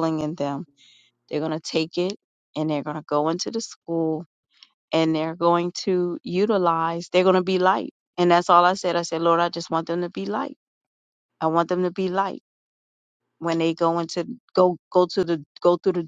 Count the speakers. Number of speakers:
1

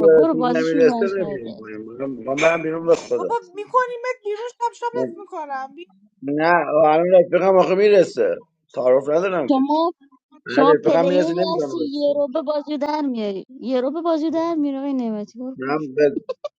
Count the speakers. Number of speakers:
3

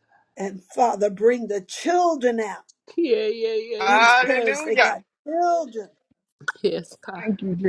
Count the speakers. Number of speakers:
3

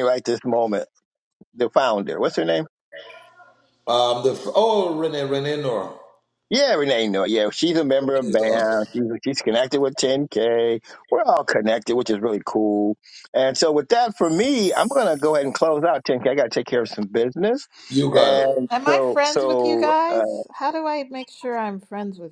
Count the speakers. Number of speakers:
3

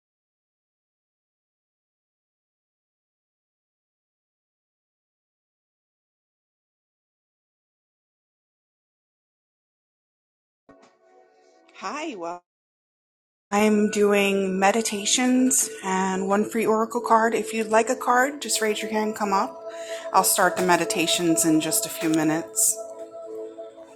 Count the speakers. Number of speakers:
1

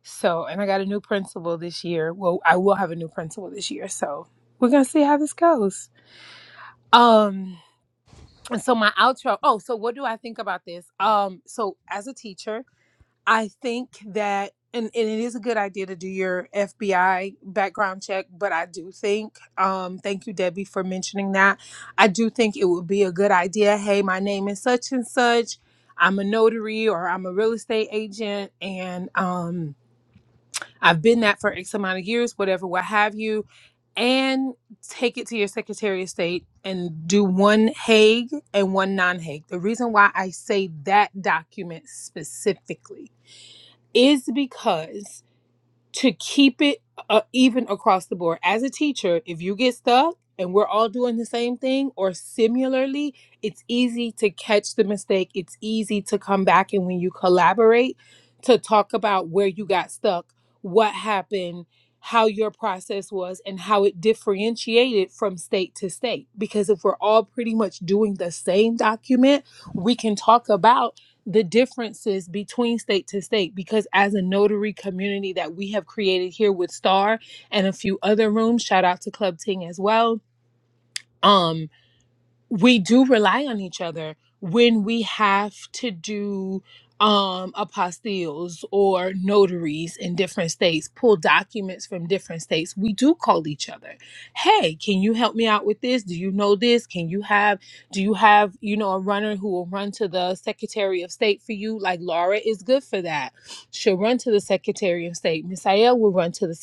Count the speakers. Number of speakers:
1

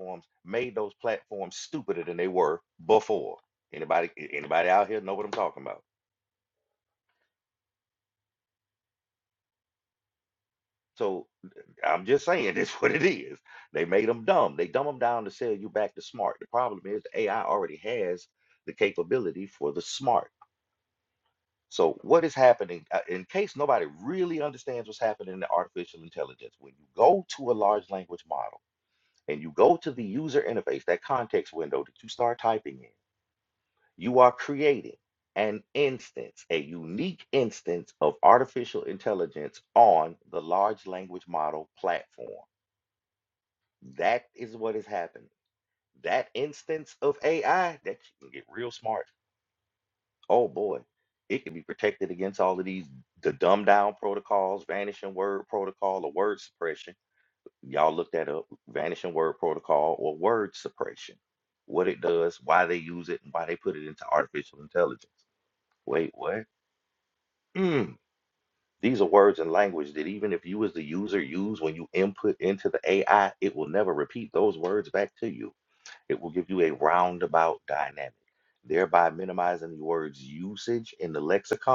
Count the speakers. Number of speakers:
1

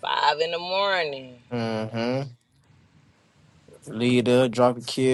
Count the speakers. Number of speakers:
2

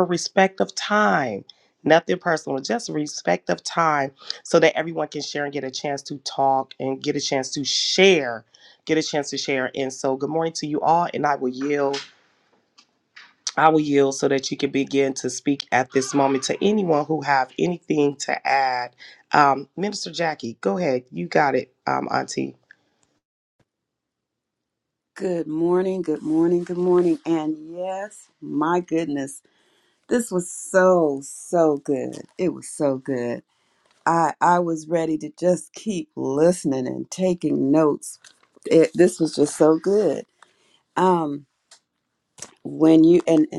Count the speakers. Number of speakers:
2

